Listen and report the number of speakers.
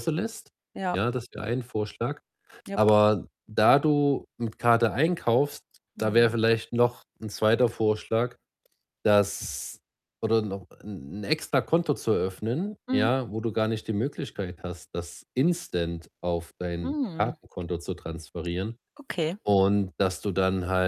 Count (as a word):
two